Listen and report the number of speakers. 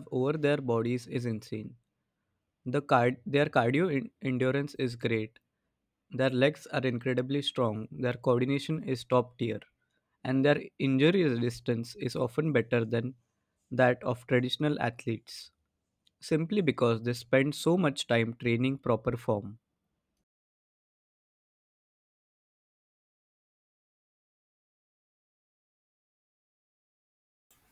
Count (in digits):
1